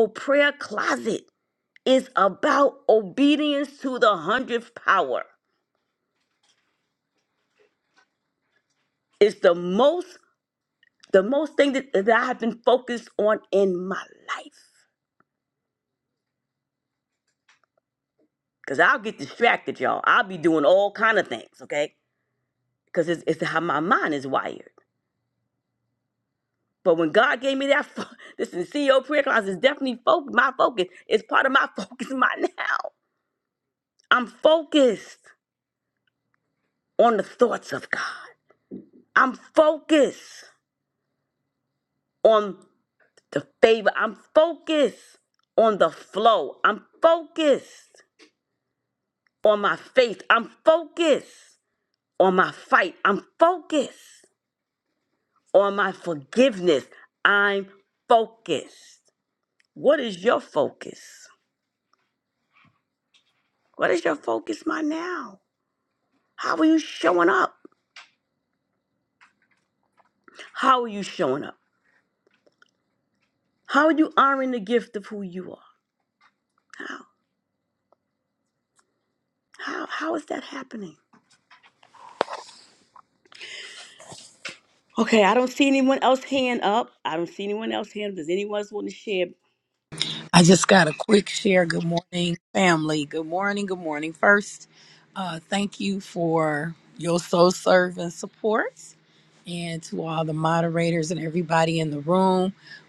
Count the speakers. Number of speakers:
two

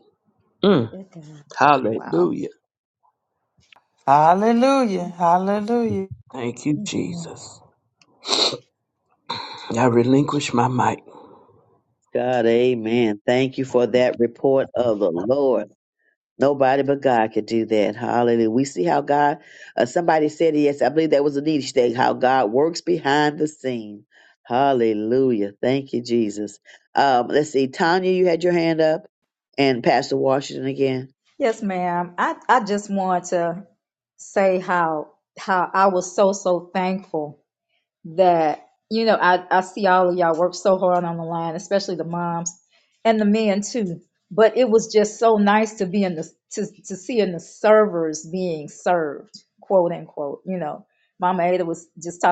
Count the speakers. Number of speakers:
four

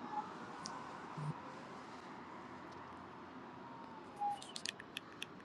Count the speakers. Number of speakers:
zero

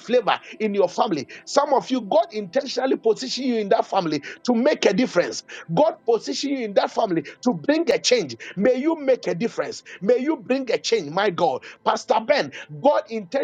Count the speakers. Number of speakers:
one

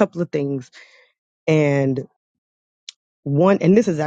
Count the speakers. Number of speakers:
one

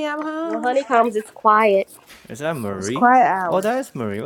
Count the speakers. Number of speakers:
three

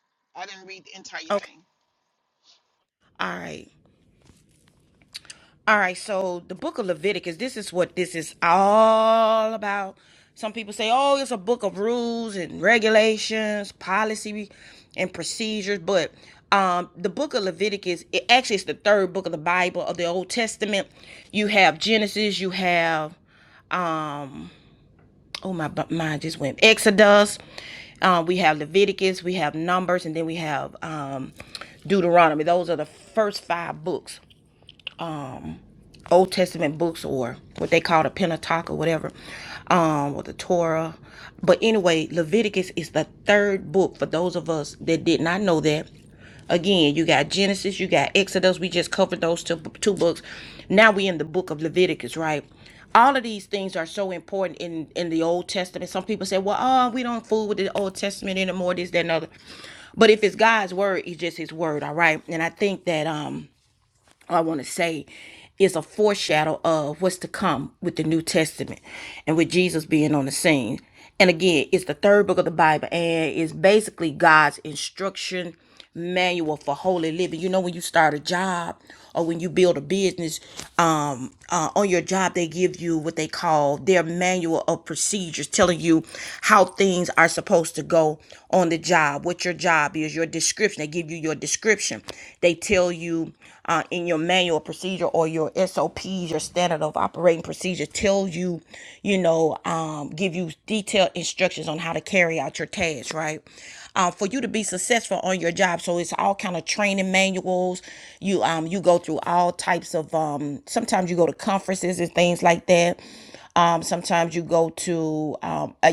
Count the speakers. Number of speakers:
two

